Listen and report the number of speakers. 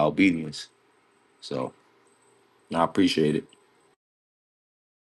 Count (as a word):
one